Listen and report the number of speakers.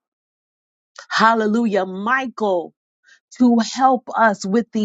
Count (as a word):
one